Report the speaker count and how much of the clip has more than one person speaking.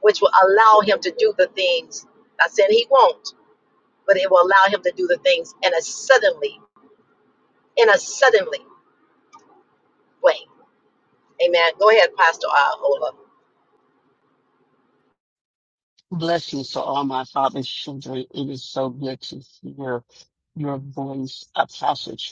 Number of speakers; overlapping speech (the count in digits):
2, no overlap